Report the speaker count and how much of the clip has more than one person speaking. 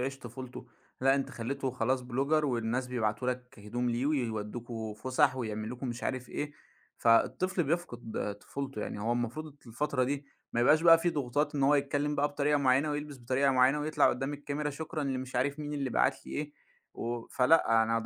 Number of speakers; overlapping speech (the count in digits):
1, no overlap